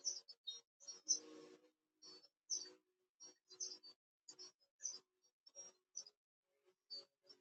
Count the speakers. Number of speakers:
zero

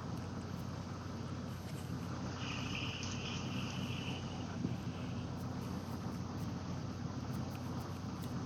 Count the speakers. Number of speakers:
zero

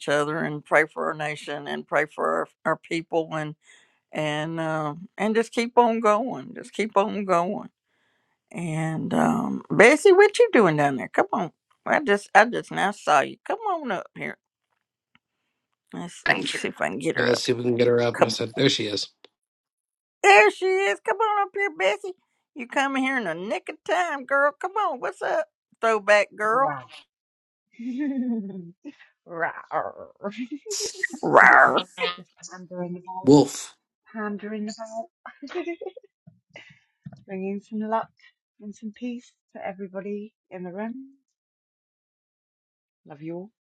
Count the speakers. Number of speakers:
three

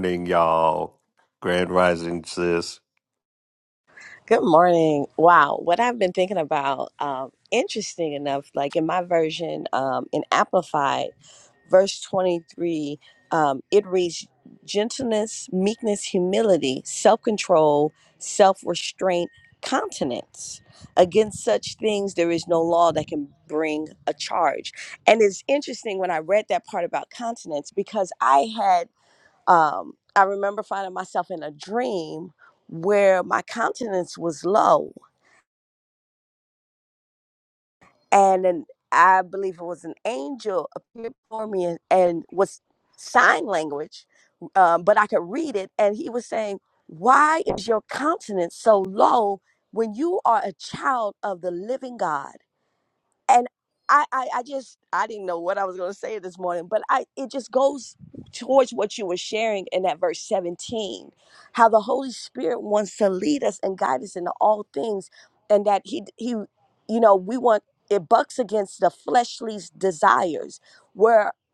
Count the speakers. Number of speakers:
two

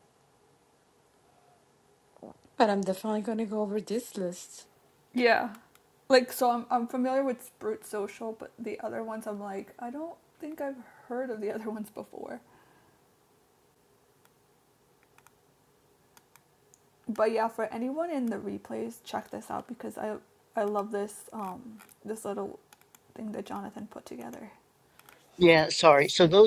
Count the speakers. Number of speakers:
three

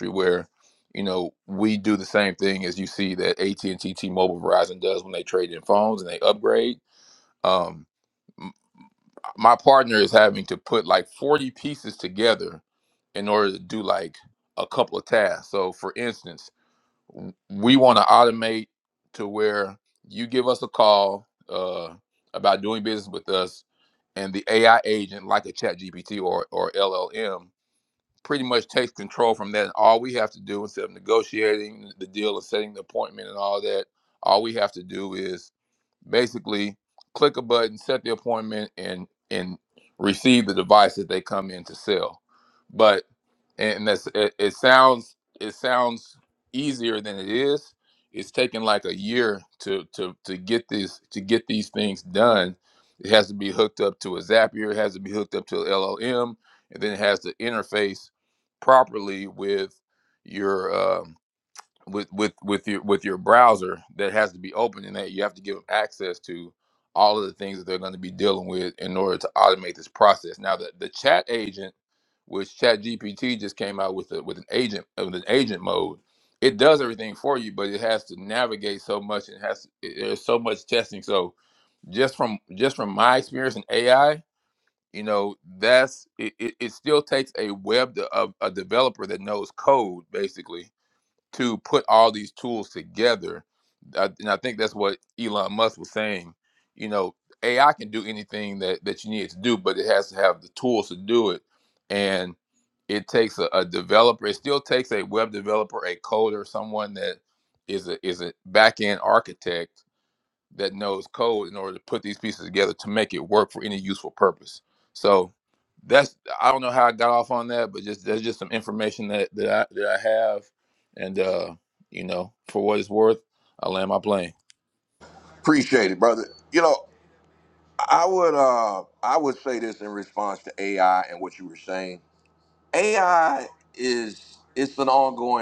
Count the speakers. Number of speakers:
two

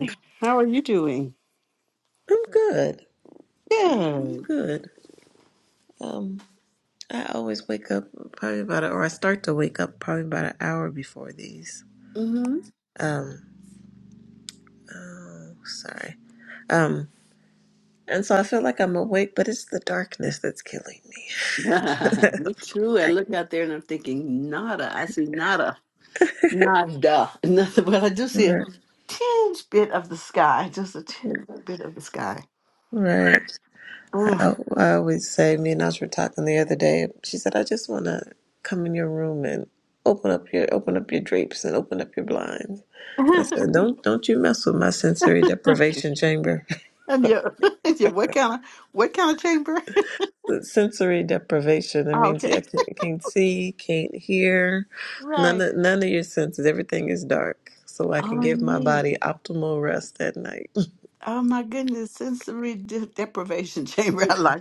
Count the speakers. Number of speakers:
two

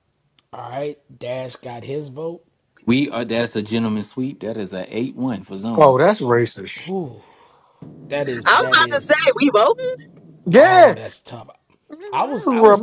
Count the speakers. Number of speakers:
four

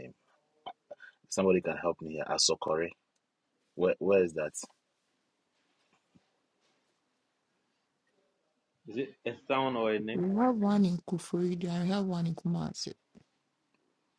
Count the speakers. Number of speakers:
three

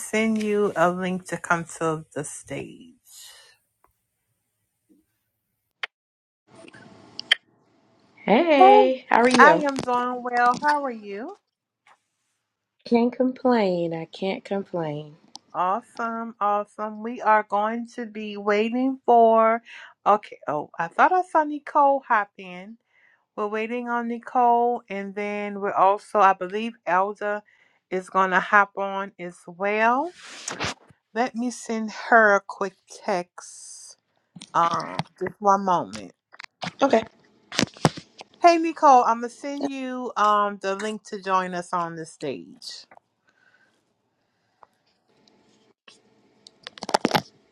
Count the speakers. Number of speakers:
two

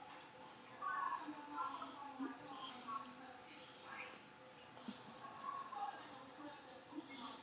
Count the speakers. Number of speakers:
zero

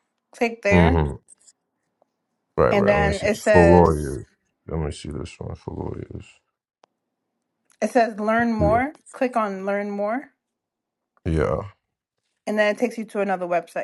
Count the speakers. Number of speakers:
two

